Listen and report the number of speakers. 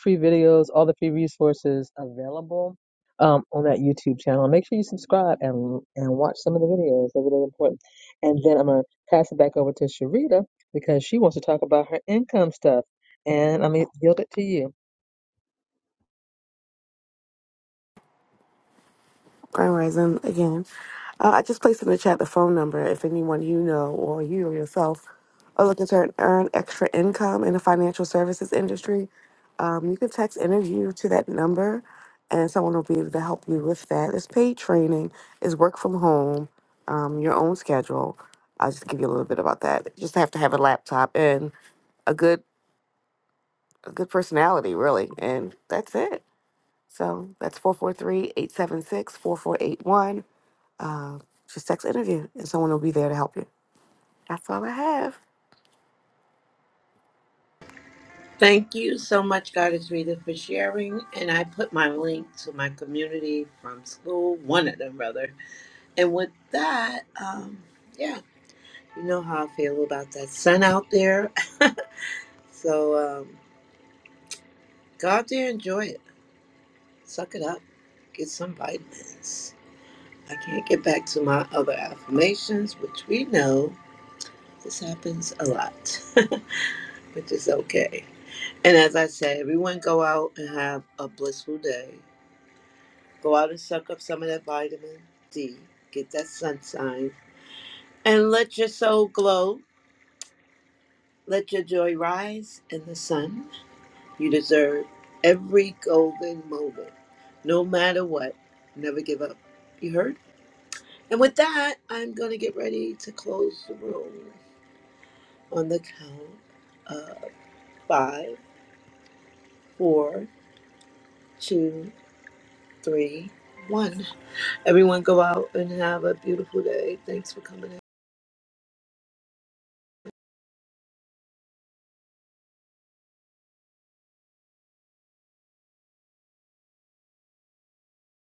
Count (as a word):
three